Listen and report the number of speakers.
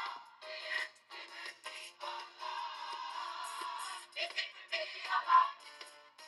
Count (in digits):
0